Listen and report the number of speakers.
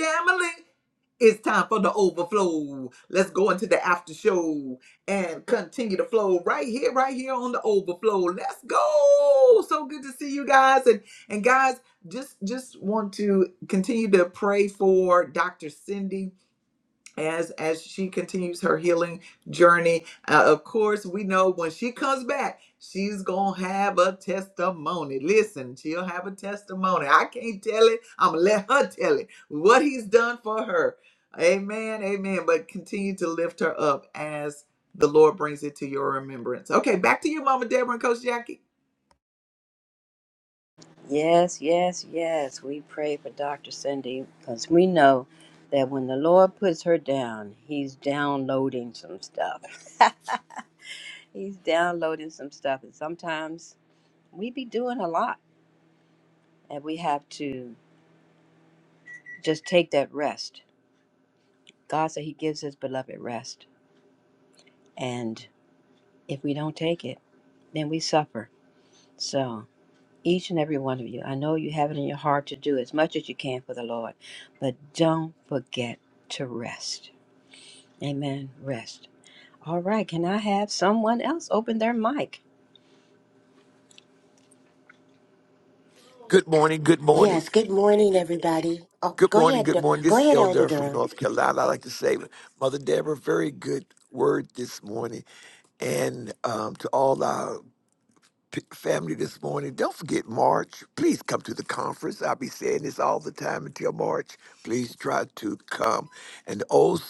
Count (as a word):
four